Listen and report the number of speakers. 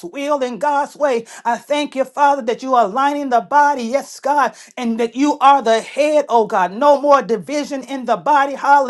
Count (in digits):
1